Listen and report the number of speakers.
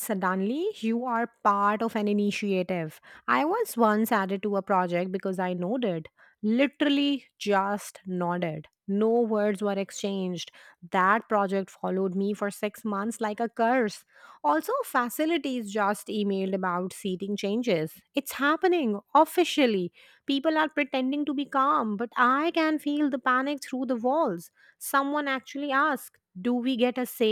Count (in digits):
1